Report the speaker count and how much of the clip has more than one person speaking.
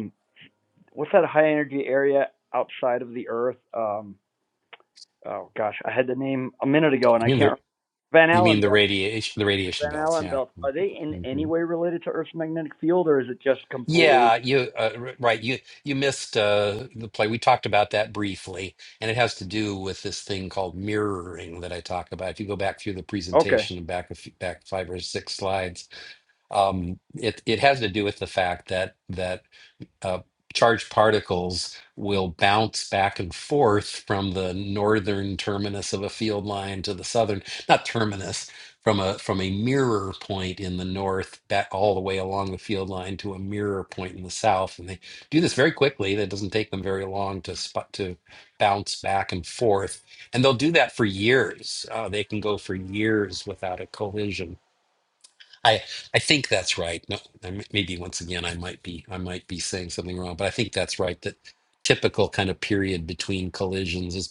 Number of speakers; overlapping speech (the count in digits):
2, about 4%